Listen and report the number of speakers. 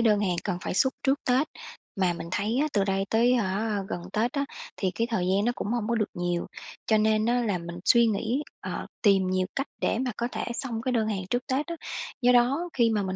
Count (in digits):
1